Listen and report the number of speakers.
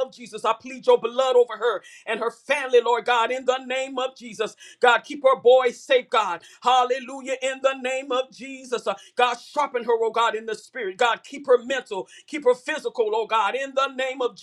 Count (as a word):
one